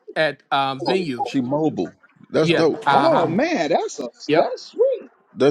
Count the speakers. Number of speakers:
three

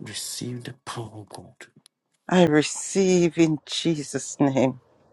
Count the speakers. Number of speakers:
two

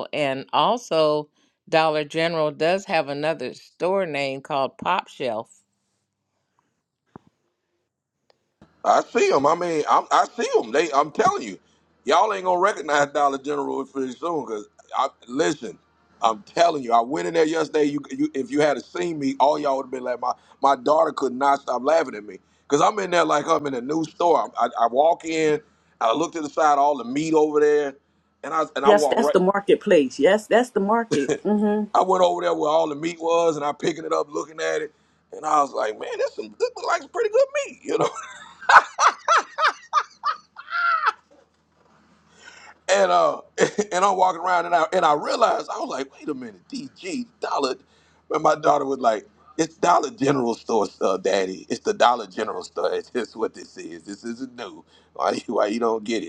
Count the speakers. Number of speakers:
three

